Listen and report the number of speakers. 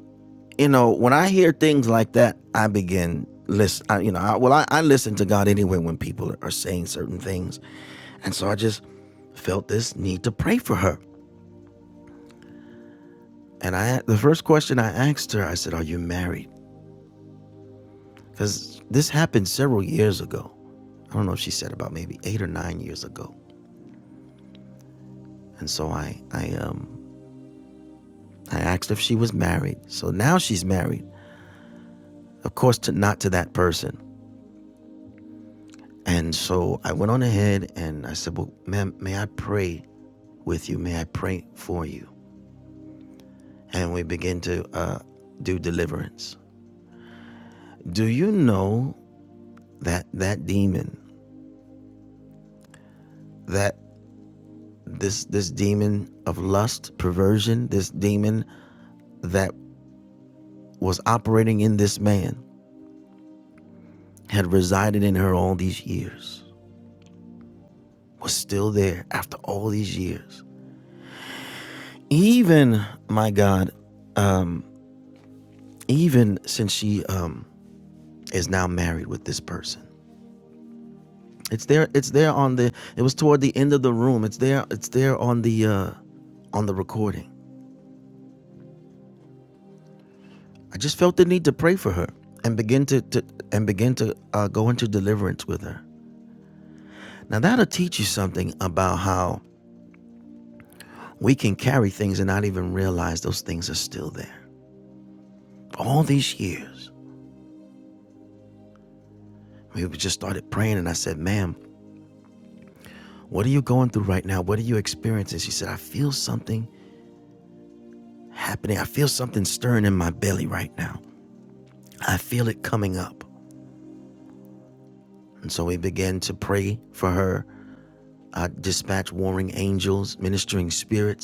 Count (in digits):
1